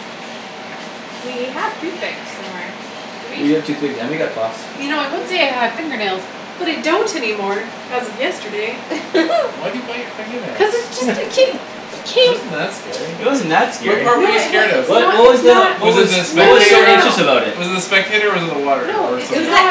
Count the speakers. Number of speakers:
4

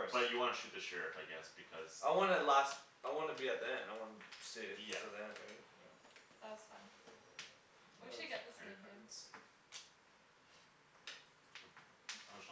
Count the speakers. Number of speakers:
3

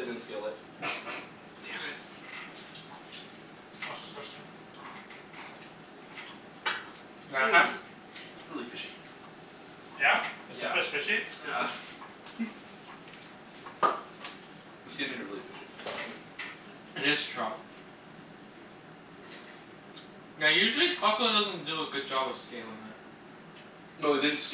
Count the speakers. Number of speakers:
3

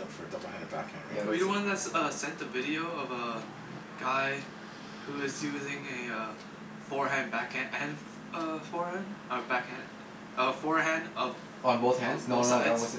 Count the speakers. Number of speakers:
3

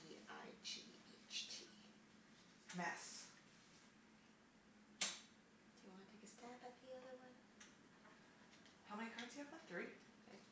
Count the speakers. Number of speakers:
2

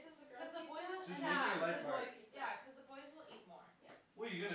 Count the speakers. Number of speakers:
3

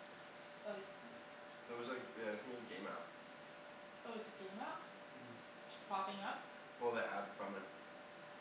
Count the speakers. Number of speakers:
2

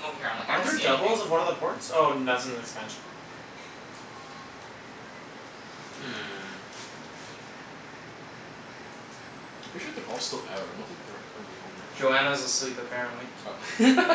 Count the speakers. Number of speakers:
4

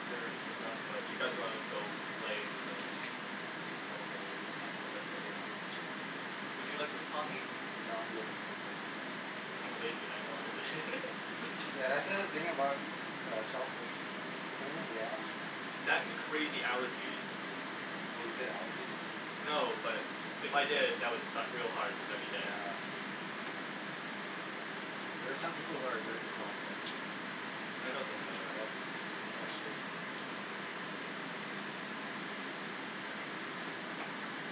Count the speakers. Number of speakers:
2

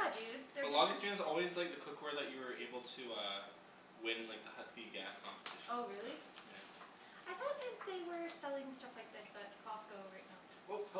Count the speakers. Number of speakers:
2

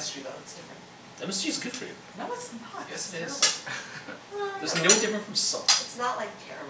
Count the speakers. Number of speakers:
3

